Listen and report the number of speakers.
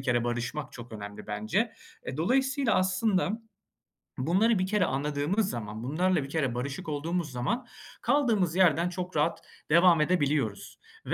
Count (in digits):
1